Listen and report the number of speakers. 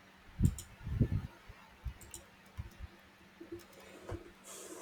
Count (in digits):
0